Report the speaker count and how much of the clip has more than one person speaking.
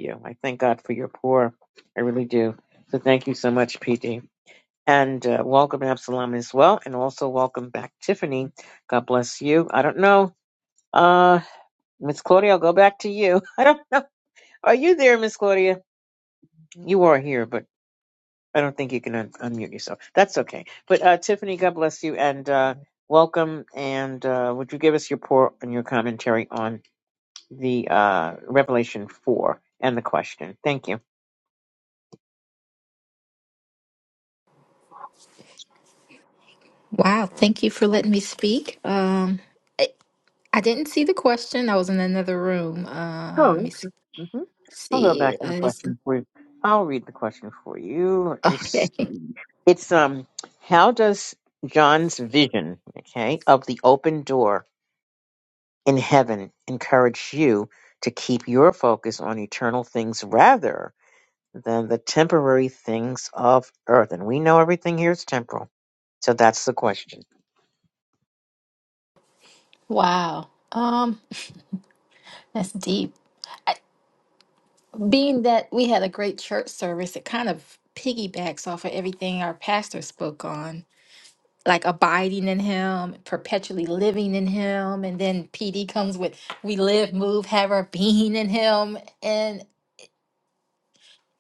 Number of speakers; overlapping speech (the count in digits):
2, about 2%